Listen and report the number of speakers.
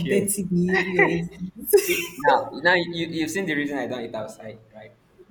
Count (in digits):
2